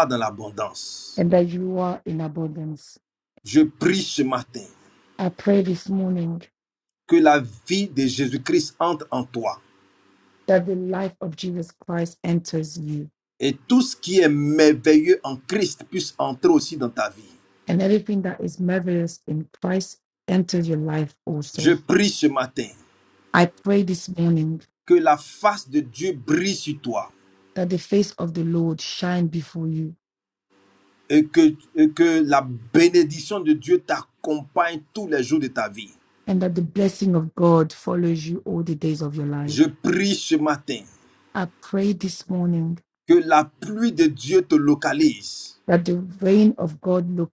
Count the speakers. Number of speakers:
2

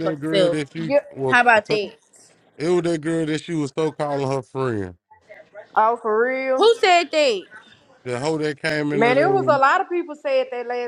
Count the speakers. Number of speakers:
3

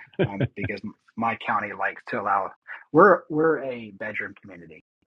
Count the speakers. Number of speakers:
1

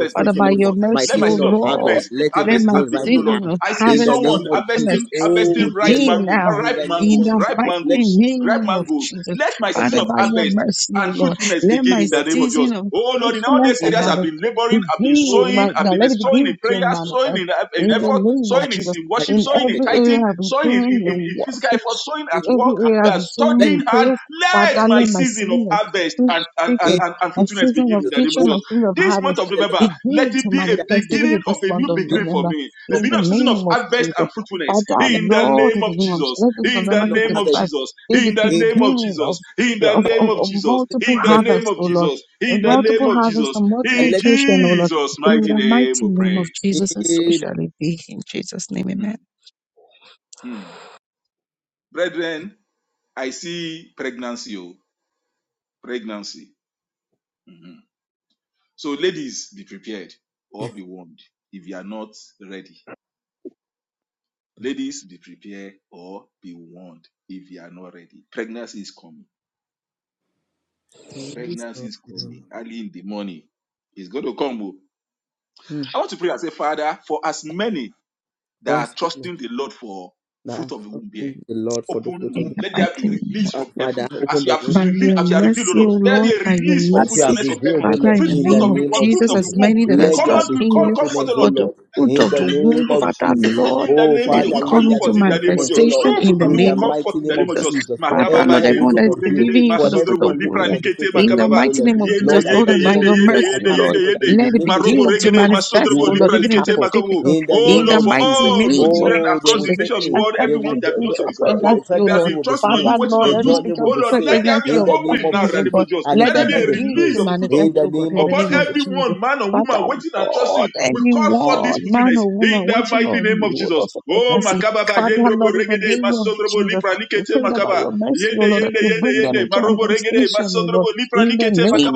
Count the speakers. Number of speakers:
3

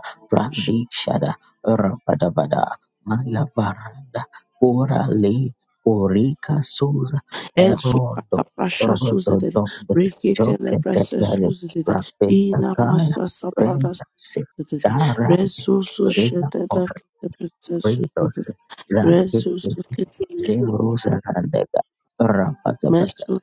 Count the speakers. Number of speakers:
2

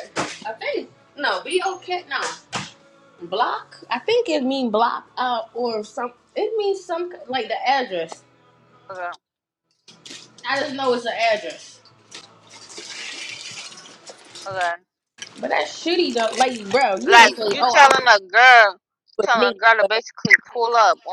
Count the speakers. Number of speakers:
2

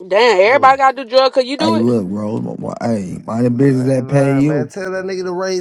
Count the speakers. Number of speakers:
3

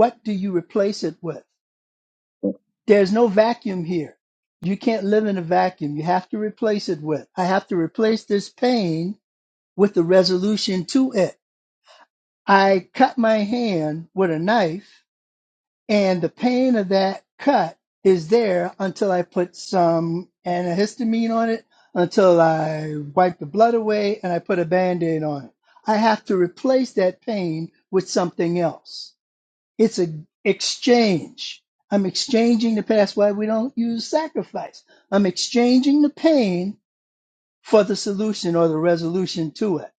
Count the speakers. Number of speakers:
1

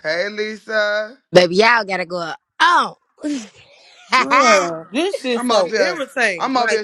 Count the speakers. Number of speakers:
3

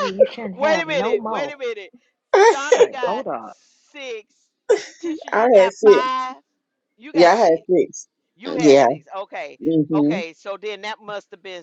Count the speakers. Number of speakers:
3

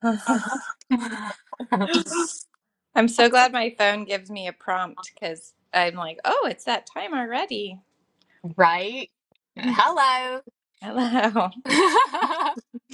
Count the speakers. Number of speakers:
2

